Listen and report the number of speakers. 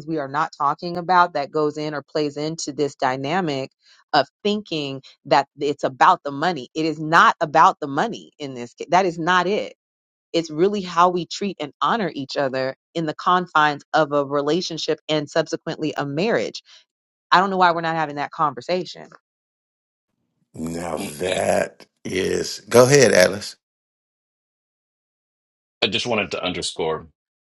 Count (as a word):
three